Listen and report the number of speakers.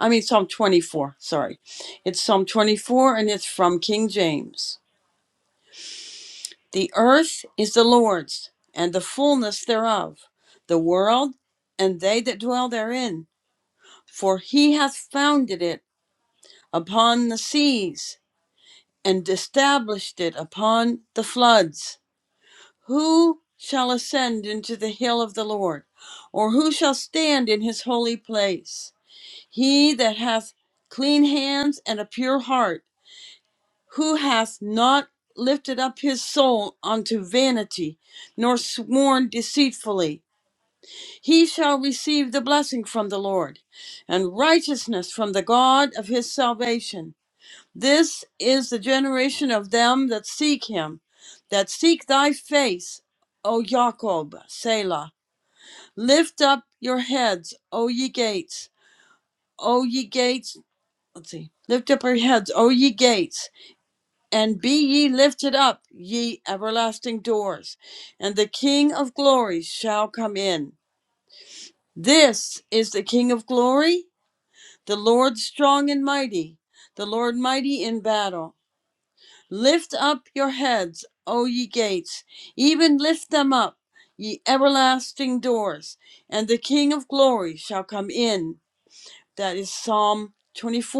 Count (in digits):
1